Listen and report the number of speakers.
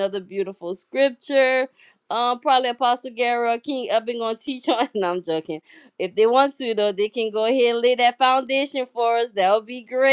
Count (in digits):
1